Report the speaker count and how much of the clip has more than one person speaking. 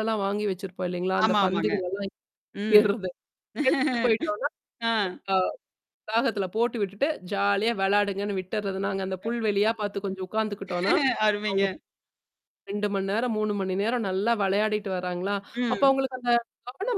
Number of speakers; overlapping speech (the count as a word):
two, about 6%